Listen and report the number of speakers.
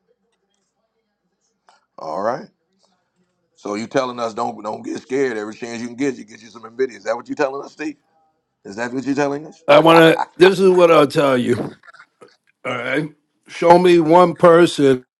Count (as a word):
two